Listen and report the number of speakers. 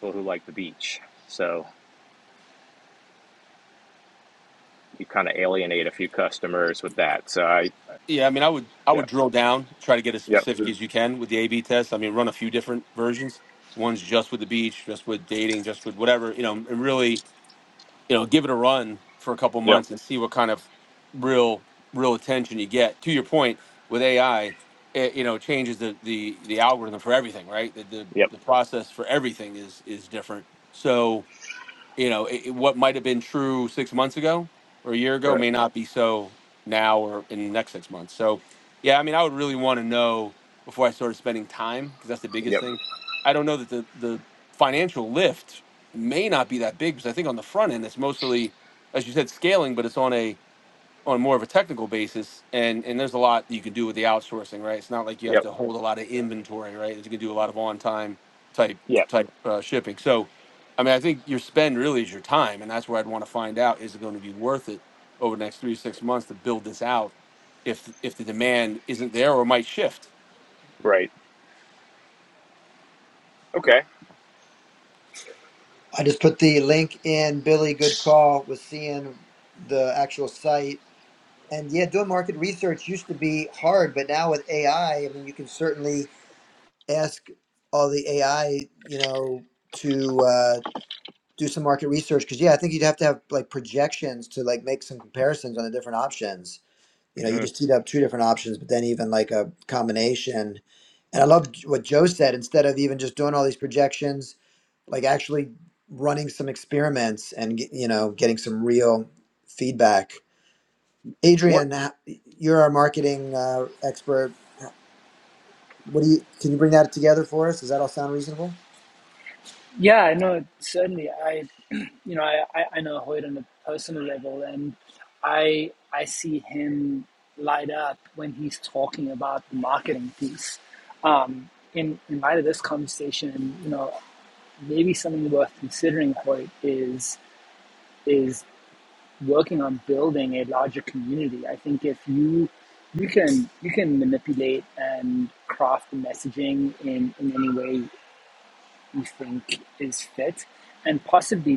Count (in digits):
4